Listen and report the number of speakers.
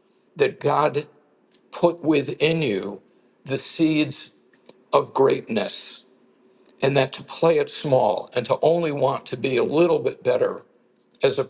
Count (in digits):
1